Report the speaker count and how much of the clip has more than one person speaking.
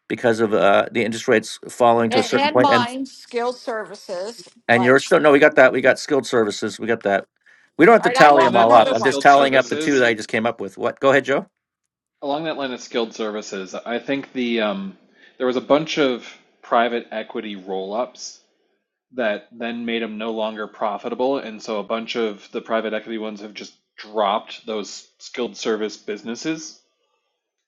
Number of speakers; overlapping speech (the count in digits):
3, about 11%